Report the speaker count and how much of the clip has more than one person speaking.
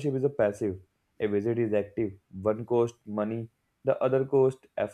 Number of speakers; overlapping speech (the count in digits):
1, no overlap